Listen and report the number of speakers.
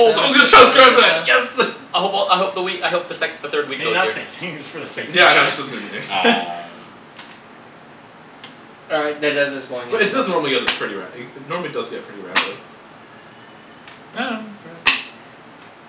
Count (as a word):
four